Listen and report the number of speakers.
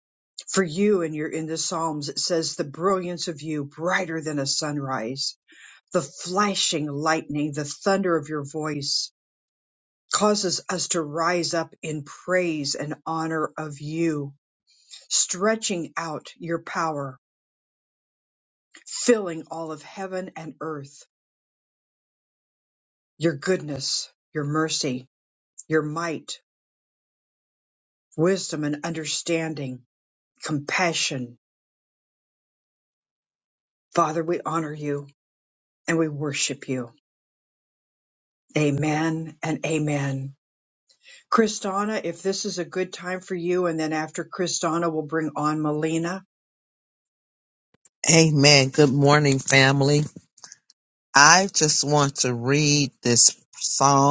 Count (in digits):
2